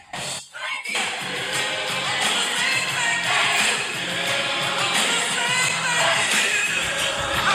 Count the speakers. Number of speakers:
0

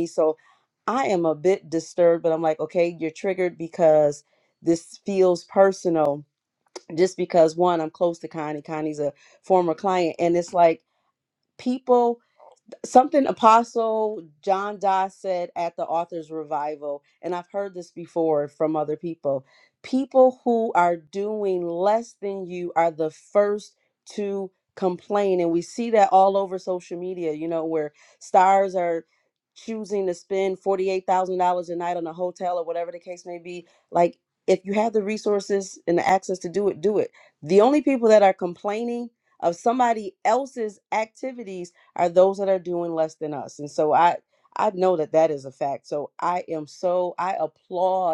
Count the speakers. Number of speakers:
1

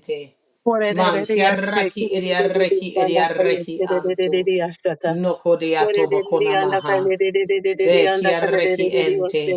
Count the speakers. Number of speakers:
2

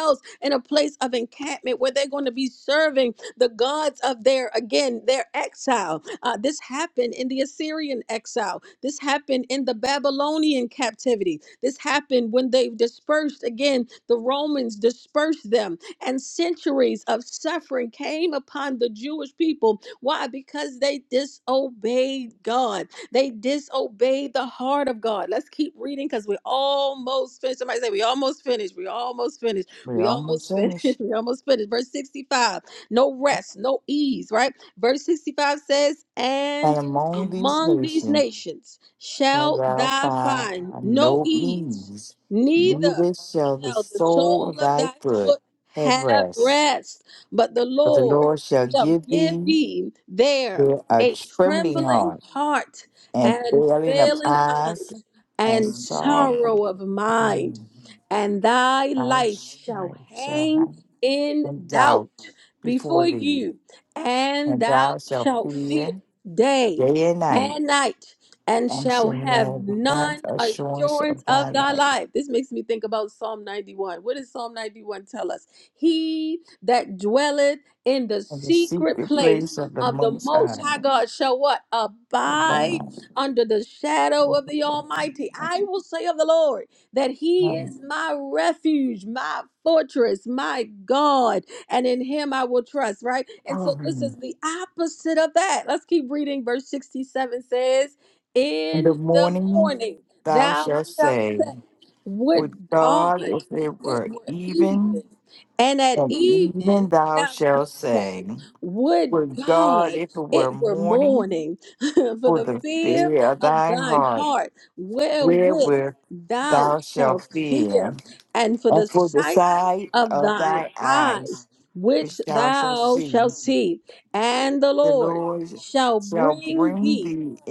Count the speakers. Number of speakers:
2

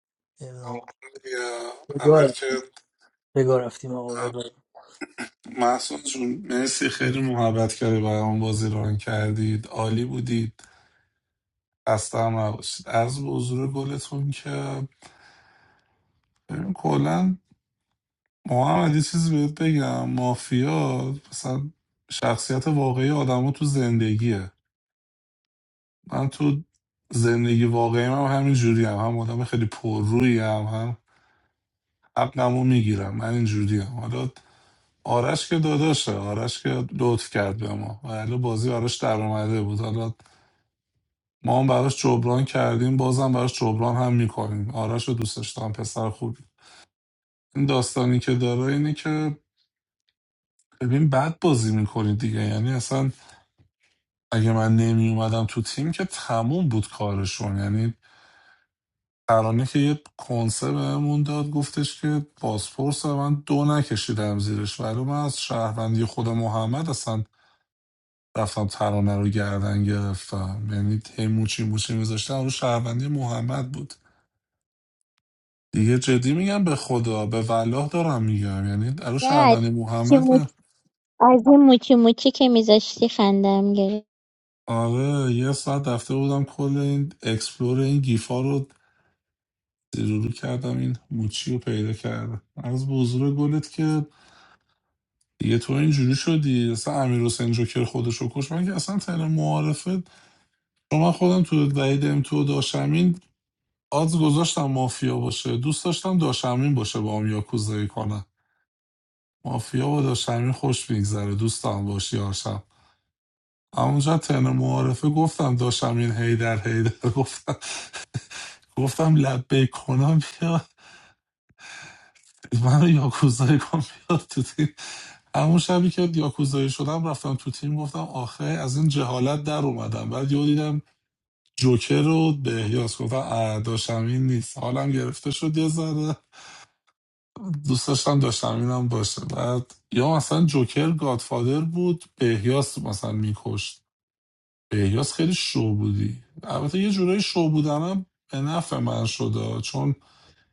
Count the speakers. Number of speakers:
3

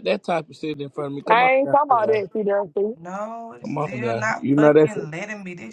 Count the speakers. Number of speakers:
3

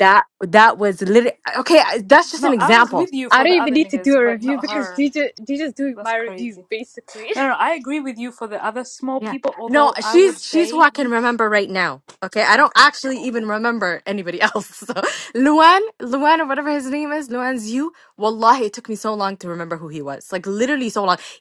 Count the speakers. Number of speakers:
3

